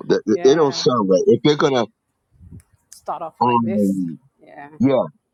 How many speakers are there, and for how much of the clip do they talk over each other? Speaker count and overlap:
2, about 17%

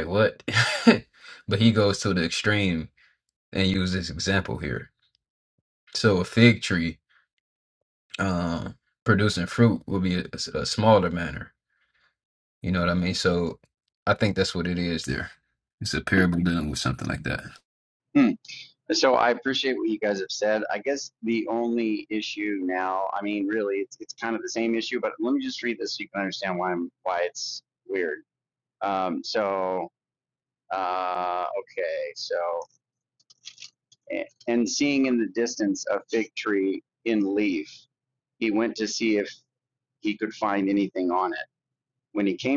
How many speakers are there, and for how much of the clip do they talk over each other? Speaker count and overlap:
2, no overlap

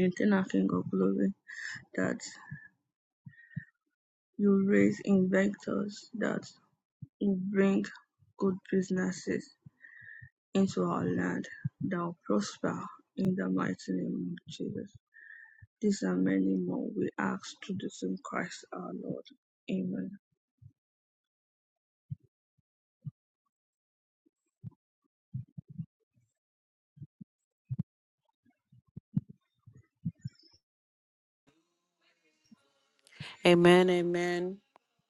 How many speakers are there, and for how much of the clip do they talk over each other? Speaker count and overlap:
2, no overlap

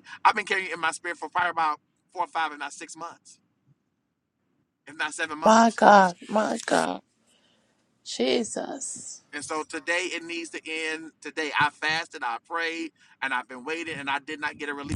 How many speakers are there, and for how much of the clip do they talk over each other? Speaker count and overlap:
2, about 1%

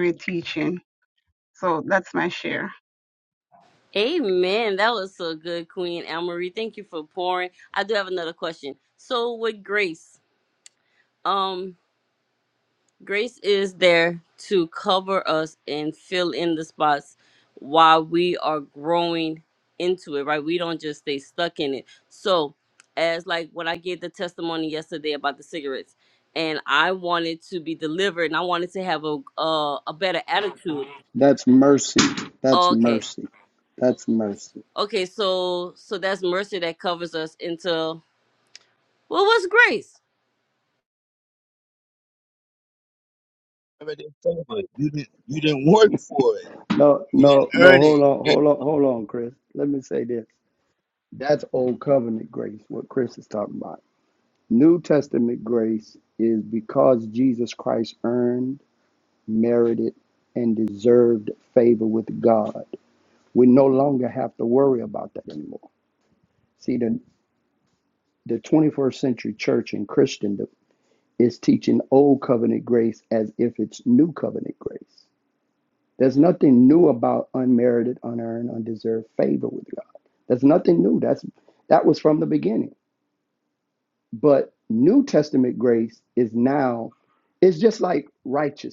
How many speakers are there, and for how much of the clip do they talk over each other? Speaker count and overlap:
4, about 2%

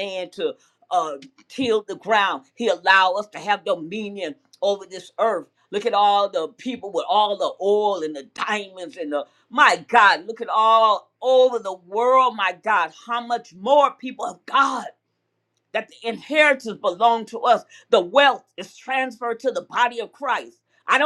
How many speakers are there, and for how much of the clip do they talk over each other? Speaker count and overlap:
1, no overlap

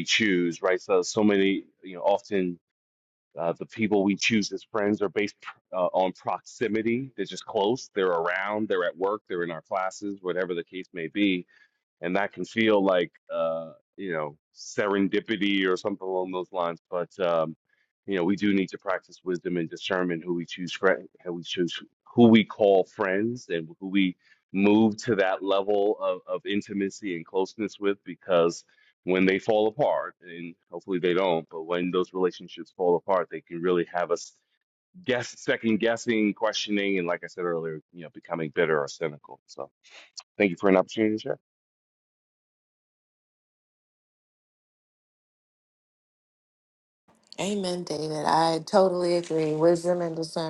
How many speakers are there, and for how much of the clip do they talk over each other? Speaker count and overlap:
2, no overlap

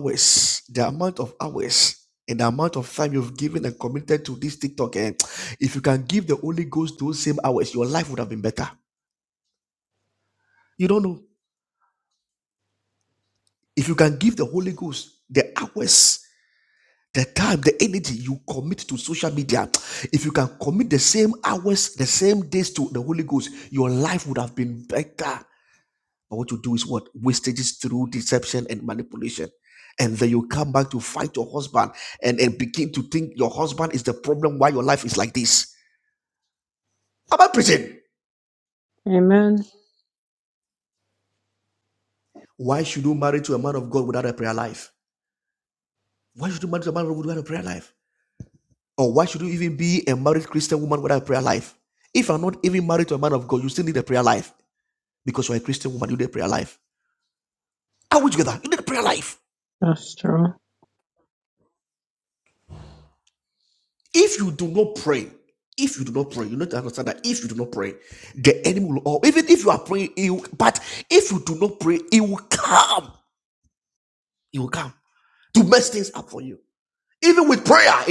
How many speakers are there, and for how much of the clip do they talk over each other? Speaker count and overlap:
2, no overlap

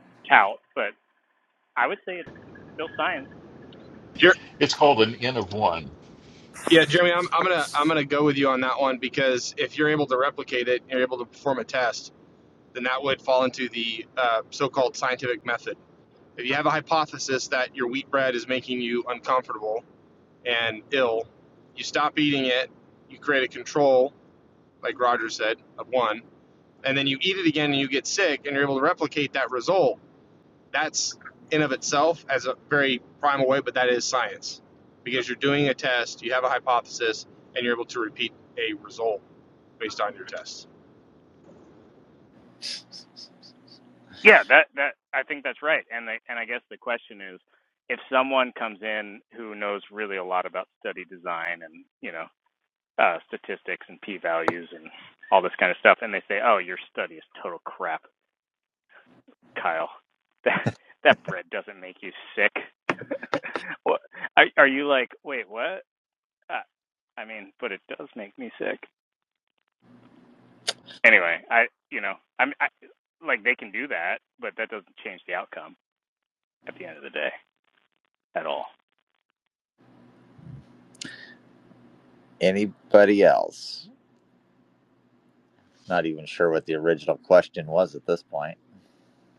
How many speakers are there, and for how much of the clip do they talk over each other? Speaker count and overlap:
4, no overlap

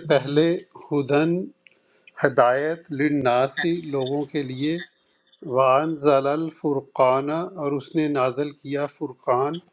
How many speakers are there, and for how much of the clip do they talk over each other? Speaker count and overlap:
1, no overlap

